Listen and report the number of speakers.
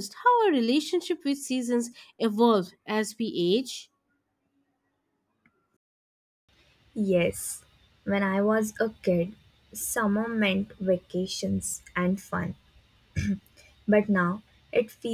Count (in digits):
2